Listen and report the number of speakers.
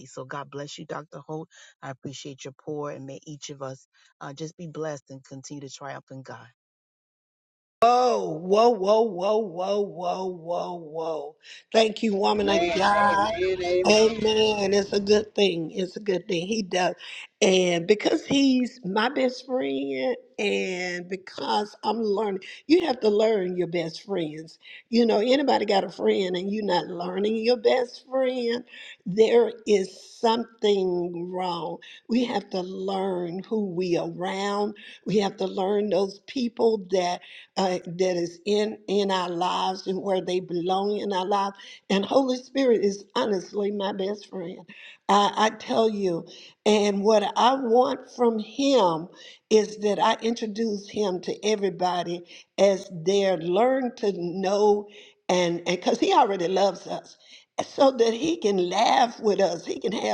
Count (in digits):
3